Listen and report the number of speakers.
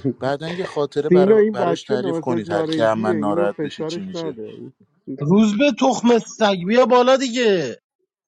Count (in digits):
3